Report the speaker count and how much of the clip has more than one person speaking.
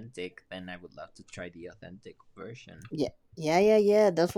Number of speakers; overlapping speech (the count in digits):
2, no overlap